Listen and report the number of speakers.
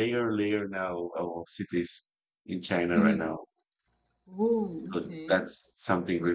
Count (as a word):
two